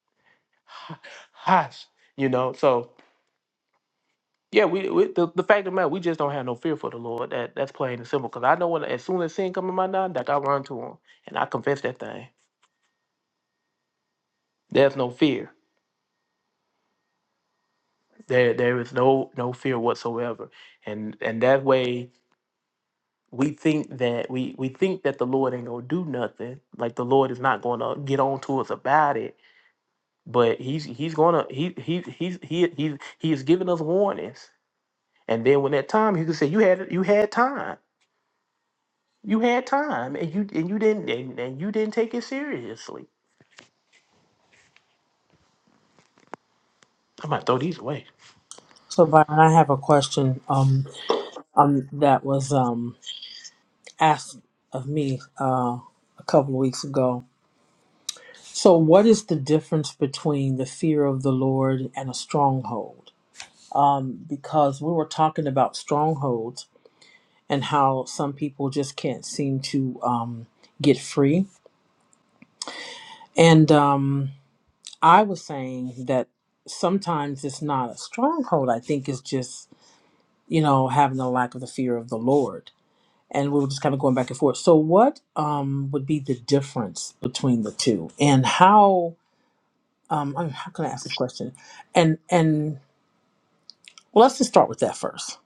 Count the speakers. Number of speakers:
2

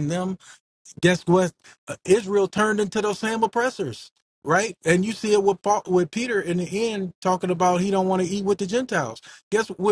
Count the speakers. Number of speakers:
1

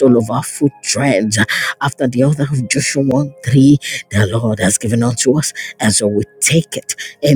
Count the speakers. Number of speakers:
1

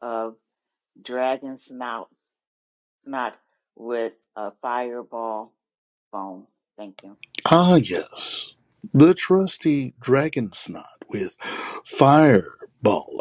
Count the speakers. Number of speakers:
2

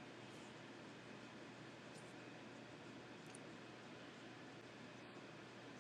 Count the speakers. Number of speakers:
0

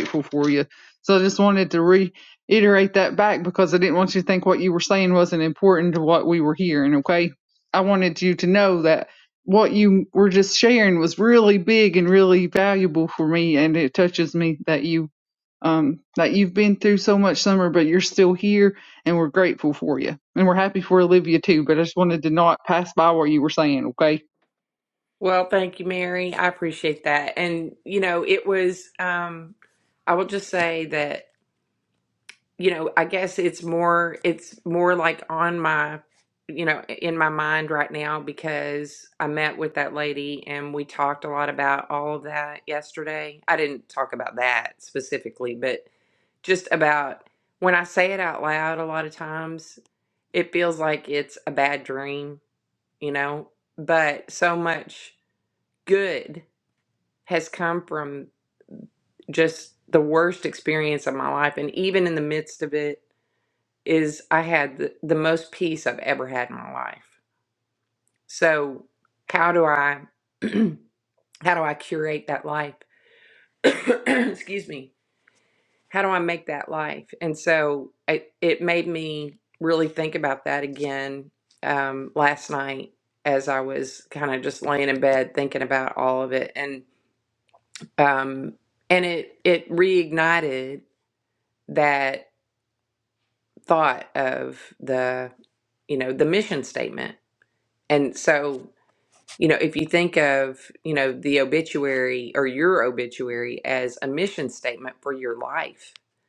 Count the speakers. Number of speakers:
2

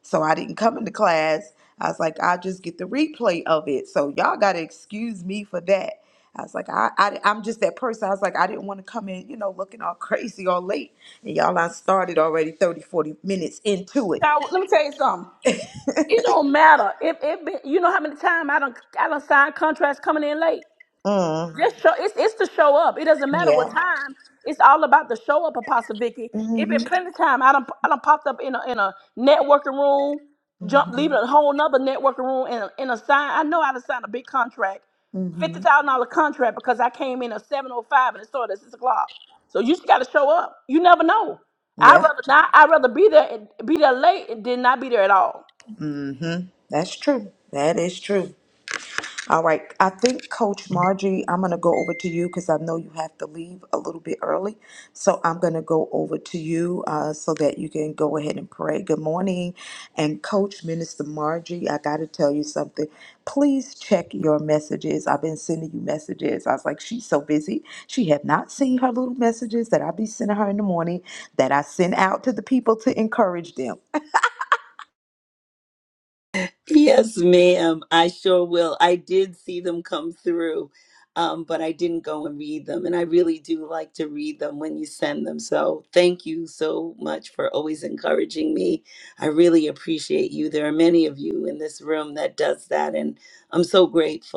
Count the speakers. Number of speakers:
3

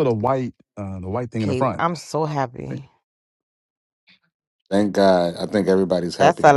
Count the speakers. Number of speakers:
3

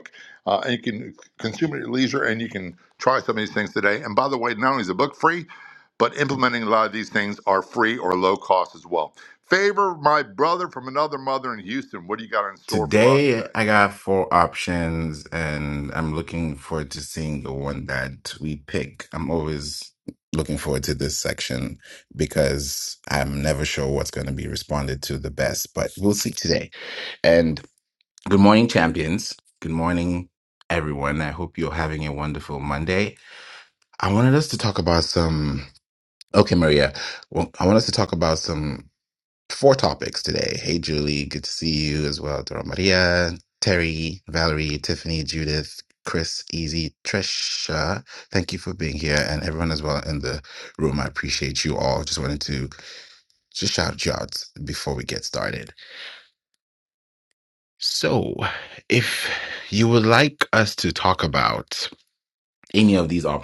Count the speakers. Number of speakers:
2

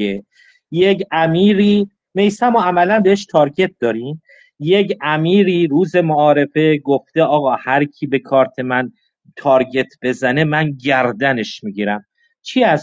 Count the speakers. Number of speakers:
1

